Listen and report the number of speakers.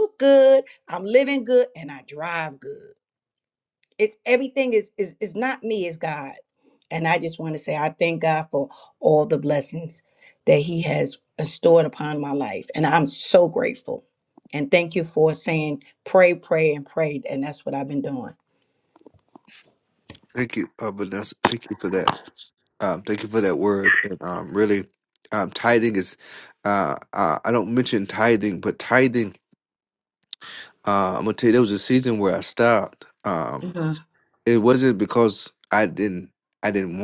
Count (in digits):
2